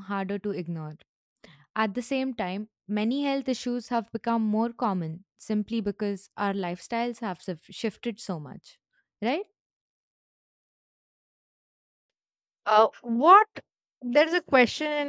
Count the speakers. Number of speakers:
two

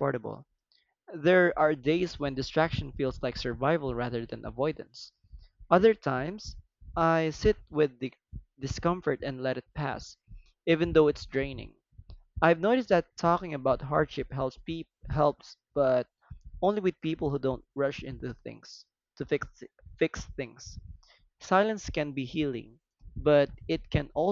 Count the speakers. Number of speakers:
one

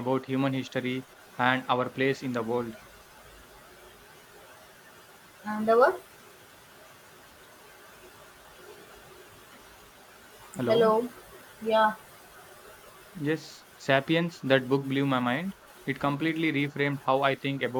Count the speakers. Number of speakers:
two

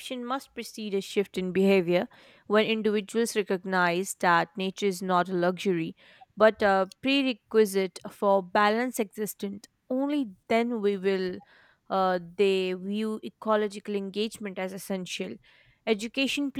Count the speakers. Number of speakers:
one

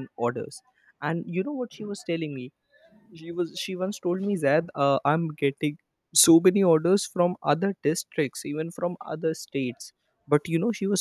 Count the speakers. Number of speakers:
one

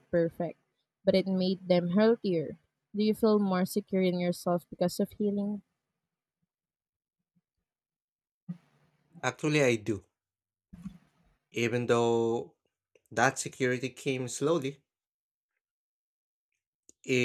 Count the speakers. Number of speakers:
two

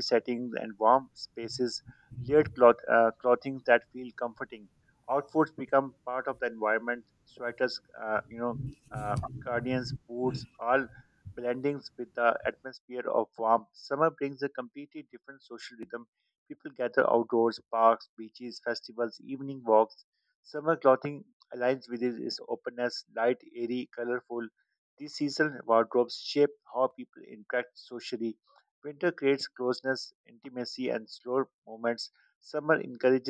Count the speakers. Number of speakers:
one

